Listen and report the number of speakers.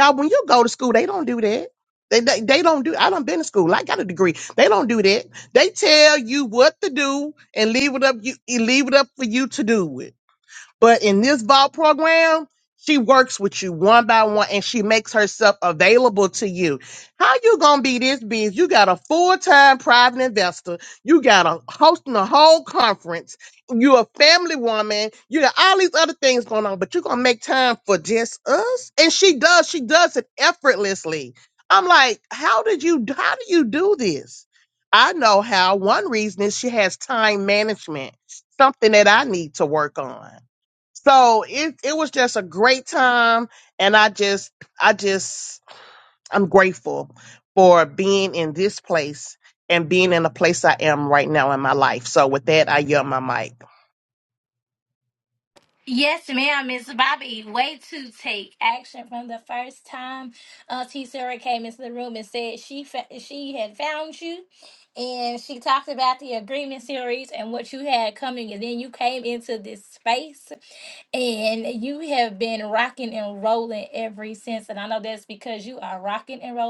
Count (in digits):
2